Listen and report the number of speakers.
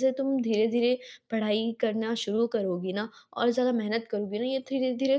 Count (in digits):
1